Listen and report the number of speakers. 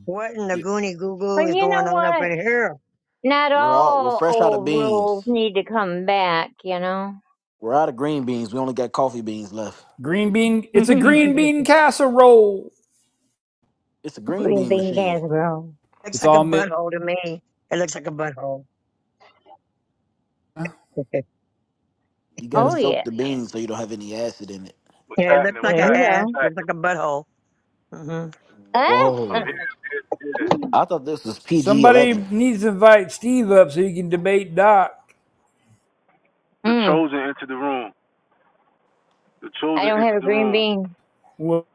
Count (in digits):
5